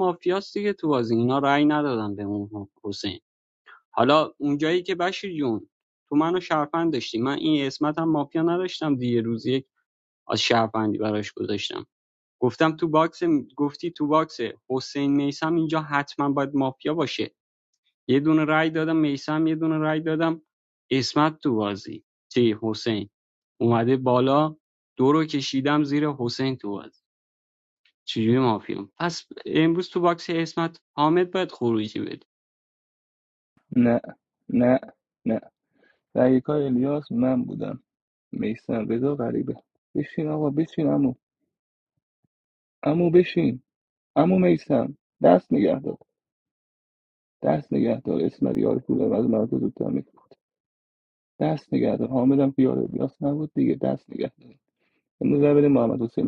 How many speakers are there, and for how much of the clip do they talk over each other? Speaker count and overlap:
2, no overlap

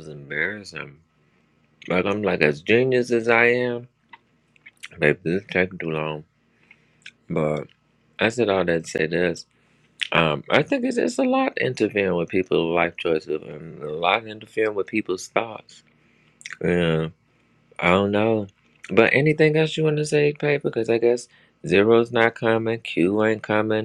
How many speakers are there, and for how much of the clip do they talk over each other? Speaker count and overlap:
1, no overlap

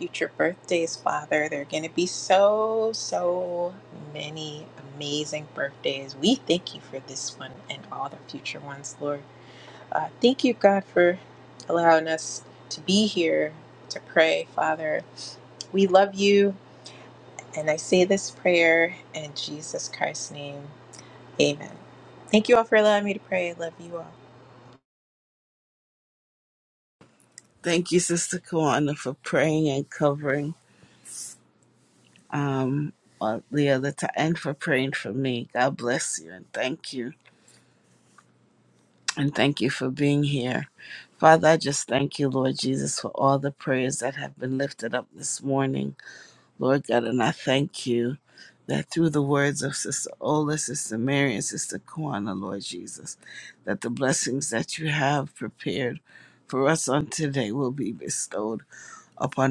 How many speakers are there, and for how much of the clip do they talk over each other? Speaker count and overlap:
2, no overlap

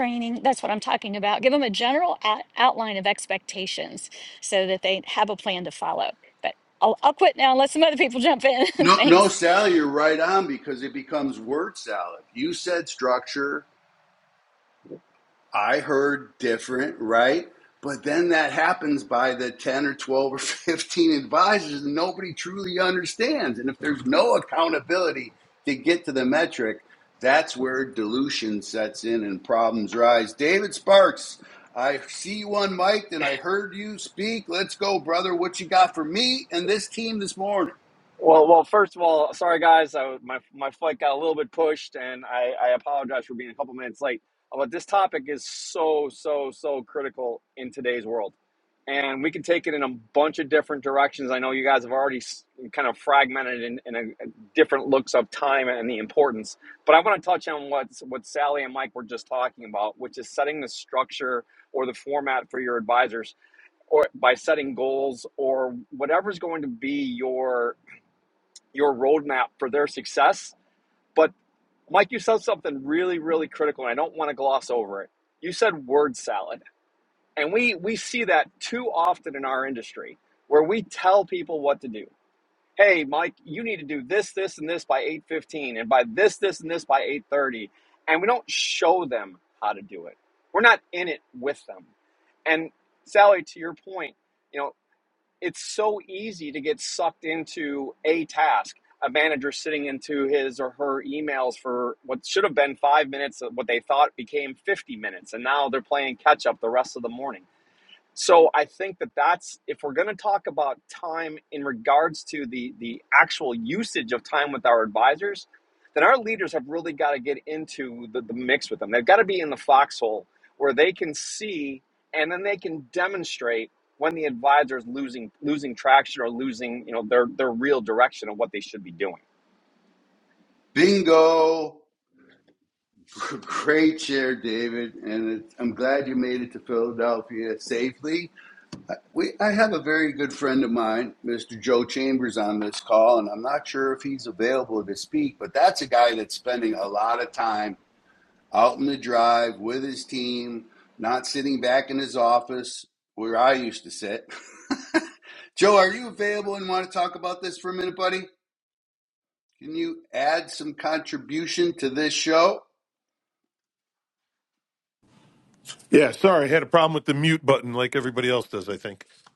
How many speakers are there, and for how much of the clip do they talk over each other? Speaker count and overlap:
4, under 1%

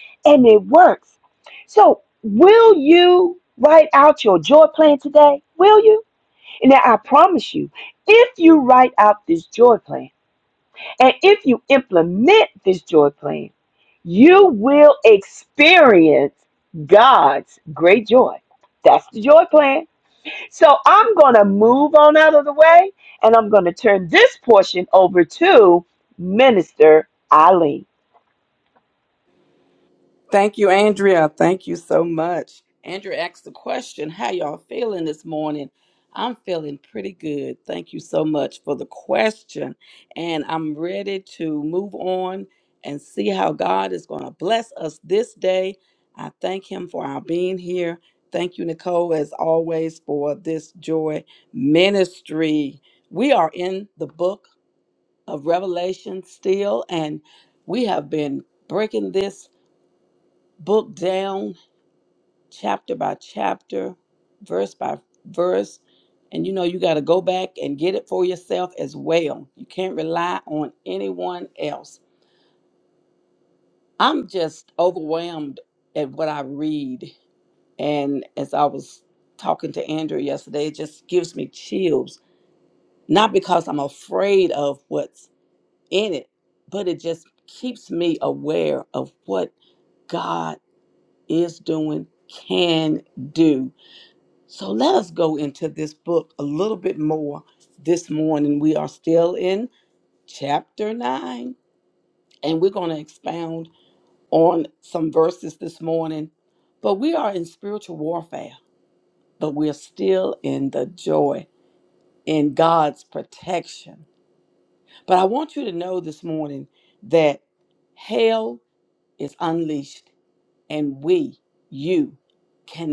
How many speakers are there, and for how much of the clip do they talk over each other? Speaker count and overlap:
2, no overlap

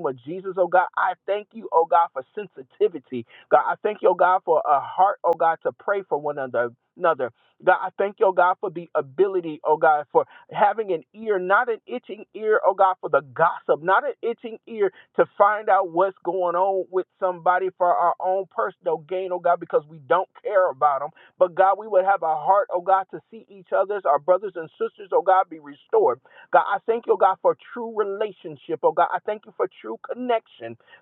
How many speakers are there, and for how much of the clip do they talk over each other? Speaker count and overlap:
1, no overlap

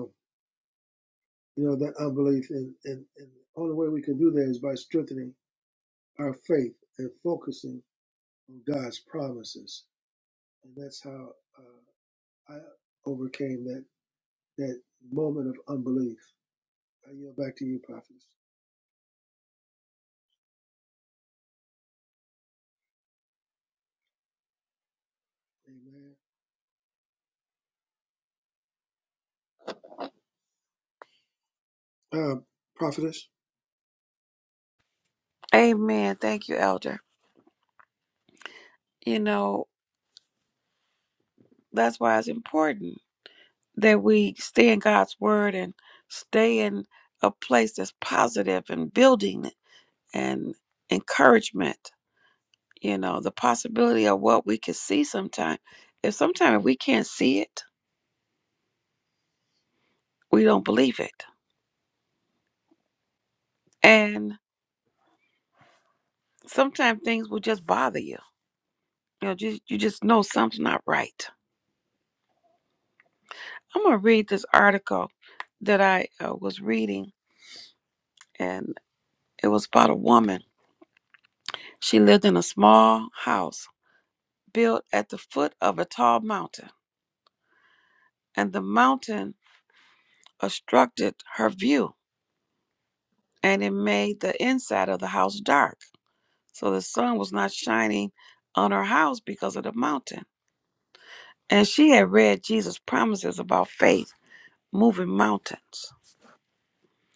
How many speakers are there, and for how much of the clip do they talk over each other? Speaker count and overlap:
2, no overlap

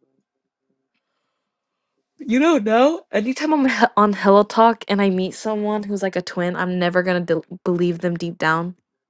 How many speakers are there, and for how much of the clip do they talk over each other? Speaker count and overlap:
1, no overlap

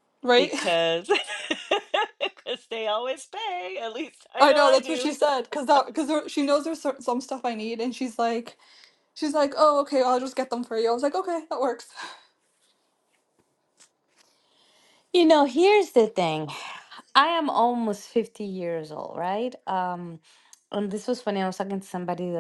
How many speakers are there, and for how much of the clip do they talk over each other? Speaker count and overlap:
3, about 4%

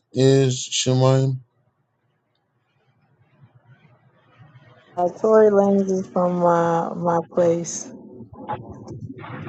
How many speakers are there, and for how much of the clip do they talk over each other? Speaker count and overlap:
2, no overlap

